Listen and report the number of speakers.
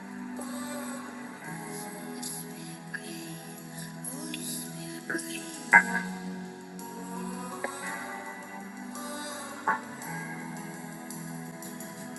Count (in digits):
0